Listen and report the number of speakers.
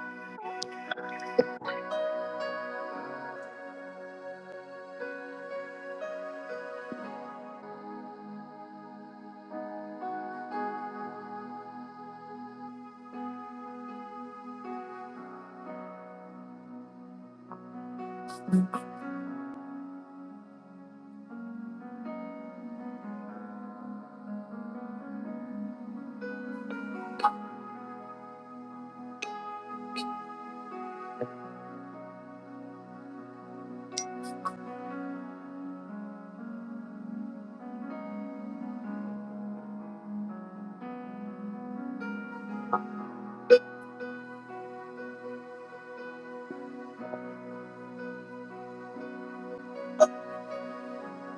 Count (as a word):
zero